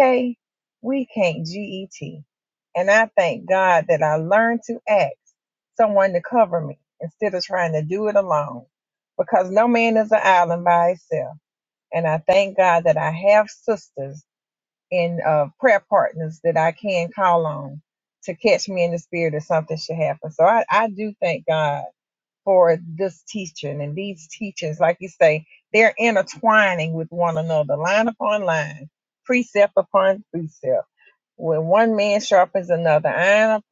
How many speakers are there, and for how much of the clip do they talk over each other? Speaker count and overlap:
1, no overlap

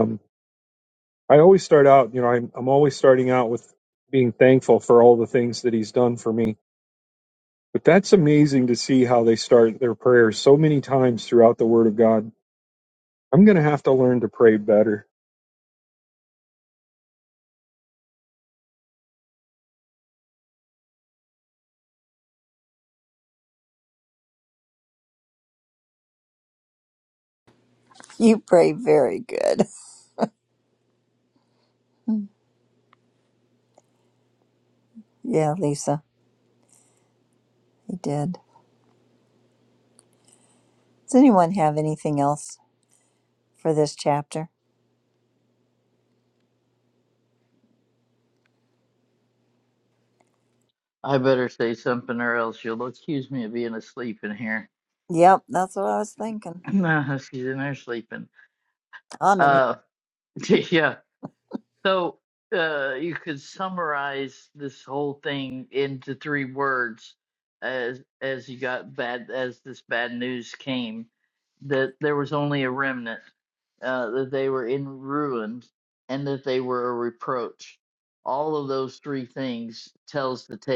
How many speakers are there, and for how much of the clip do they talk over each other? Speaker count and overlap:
3, under 1%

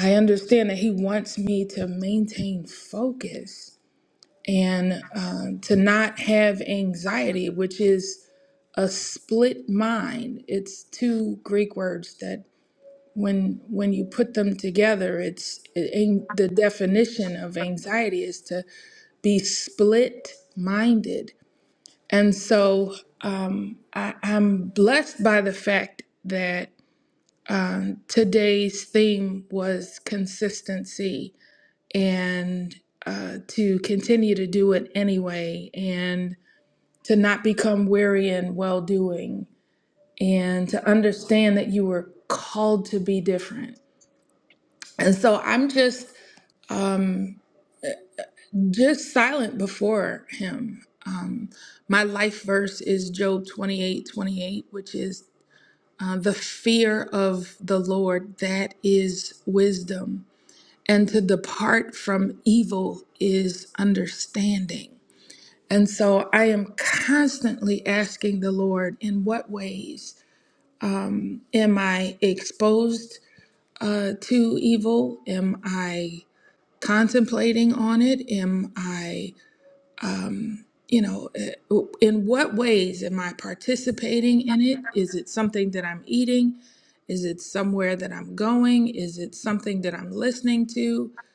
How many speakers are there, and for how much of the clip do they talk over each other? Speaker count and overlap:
1, no overlap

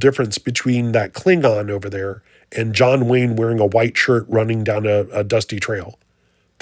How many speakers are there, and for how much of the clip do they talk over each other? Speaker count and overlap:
1, no overlap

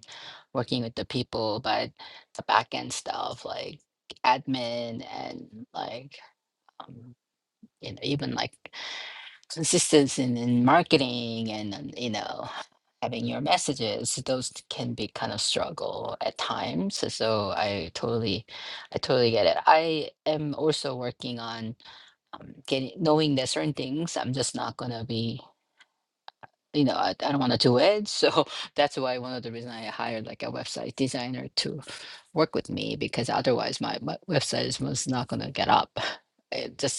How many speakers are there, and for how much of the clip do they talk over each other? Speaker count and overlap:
1, no overlap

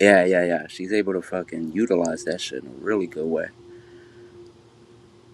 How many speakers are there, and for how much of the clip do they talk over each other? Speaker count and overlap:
1, no overlap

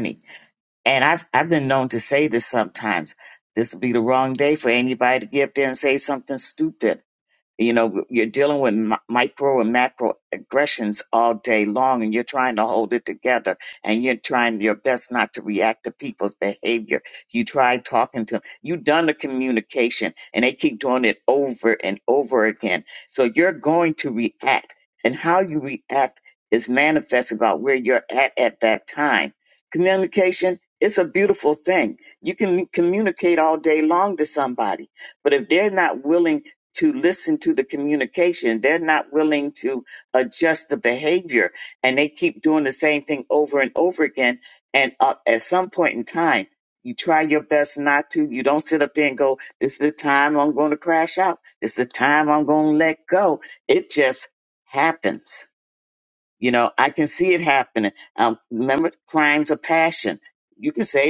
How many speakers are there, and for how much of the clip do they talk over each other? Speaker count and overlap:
1, no overlap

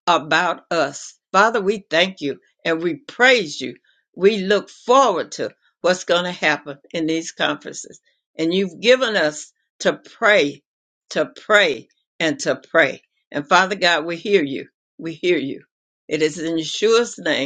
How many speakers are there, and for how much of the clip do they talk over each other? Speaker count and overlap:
1, no overlap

